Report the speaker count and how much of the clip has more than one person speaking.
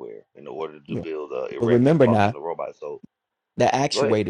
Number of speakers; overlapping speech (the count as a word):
two, about 26%